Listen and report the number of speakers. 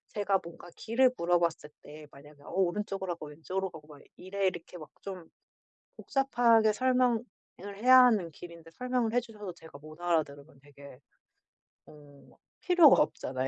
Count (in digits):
1